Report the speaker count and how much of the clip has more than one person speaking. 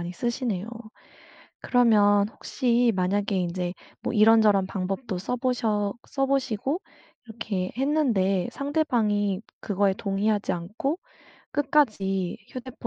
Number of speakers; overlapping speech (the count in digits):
1, no overlap